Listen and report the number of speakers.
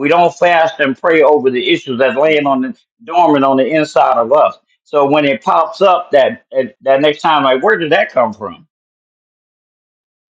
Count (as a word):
one